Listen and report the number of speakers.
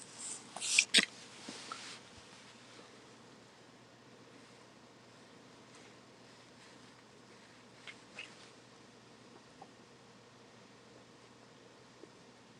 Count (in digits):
0